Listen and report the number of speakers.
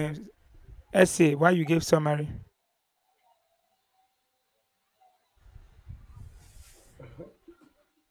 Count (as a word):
one